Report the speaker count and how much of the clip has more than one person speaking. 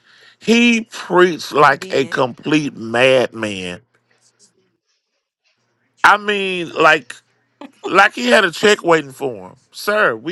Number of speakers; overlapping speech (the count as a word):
one, no overlap